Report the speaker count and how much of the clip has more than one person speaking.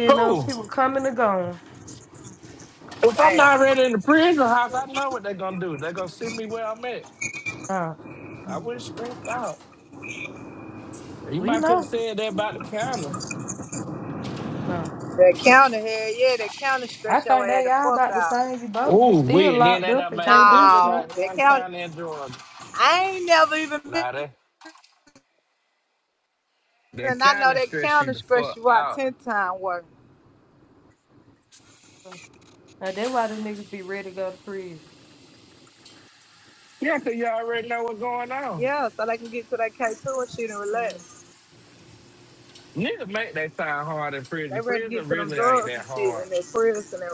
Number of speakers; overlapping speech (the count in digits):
3, about 21%